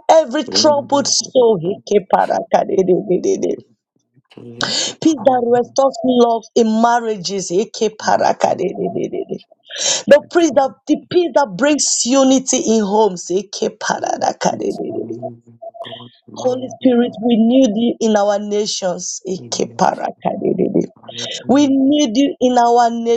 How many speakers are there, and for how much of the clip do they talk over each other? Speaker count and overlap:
two, about 12%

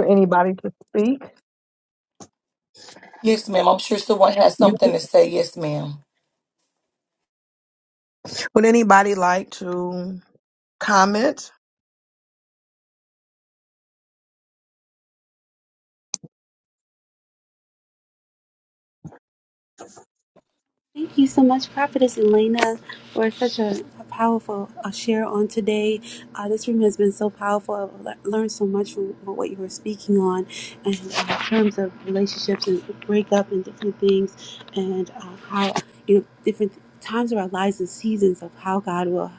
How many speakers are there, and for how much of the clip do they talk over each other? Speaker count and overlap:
three, under 1%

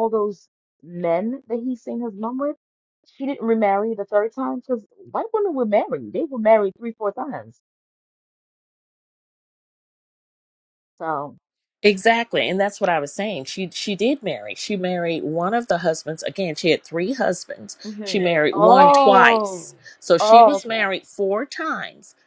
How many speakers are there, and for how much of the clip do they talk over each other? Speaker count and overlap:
two, about 10%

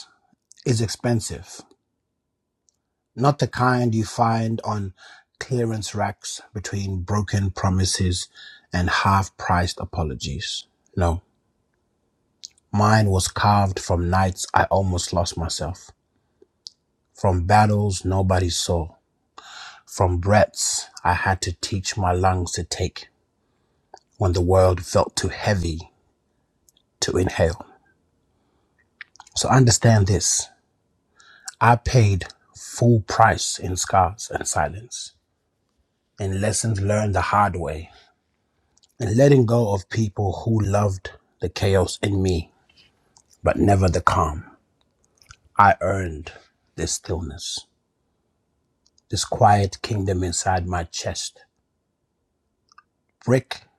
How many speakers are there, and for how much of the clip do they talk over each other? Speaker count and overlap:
one, no overlap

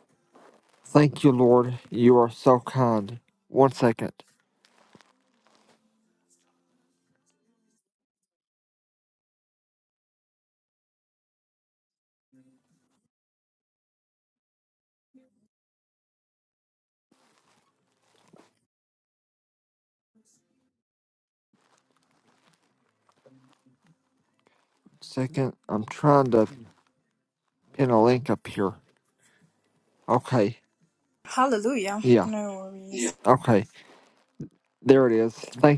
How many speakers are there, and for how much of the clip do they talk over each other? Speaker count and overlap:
two, about 1%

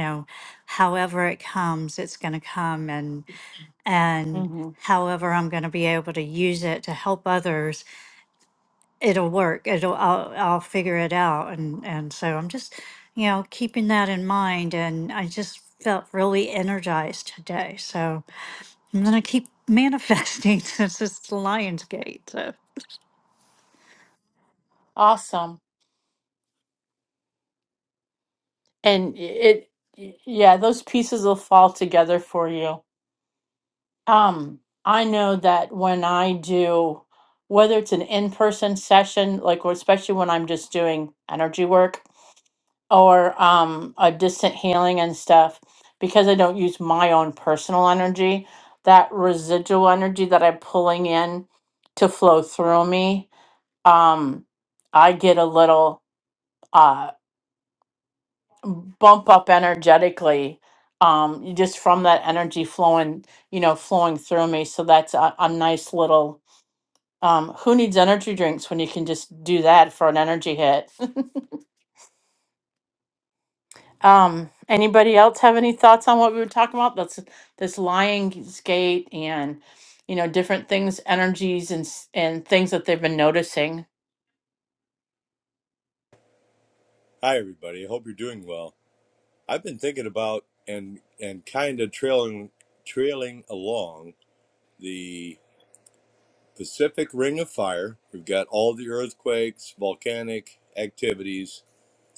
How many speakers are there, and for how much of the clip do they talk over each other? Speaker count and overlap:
three, under 1%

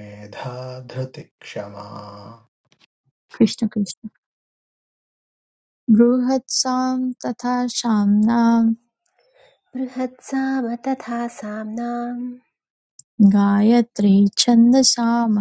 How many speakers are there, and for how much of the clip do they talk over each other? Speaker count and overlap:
three, no overlap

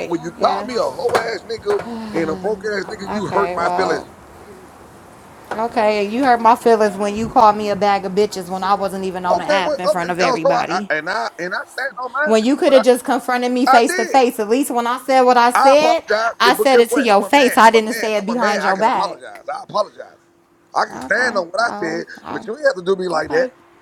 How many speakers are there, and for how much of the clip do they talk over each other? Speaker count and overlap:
two, about 38%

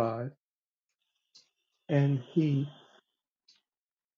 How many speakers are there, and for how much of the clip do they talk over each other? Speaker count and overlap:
one, no overlap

